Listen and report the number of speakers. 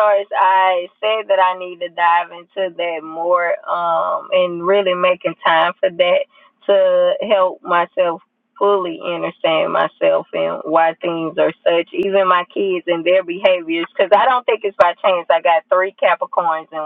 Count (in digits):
1